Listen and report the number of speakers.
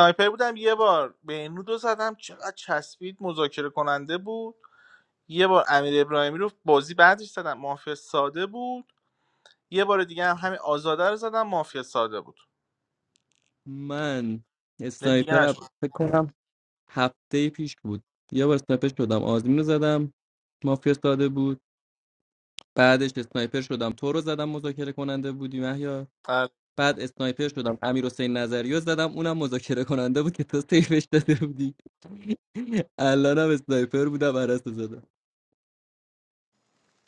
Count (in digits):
2